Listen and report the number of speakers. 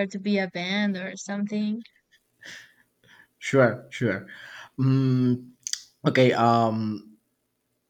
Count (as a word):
two